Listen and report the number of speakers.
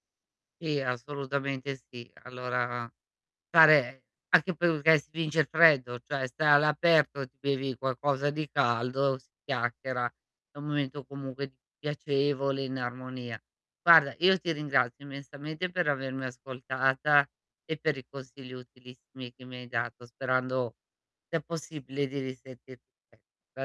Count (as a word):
one